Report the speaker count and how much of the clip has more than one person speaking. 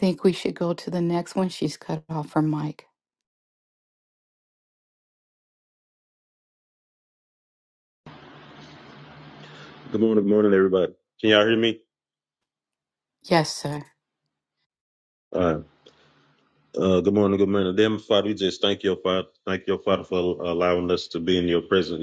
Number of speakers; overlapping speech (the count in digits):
2, no overlap